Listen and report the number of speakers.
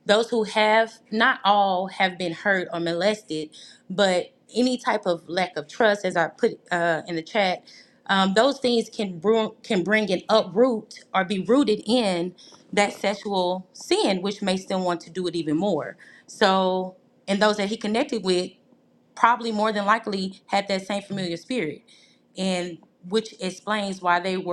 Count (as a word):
one